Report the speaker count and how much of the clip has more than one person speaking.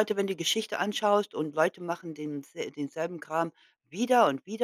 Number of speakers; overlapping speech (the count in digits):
1, no overlap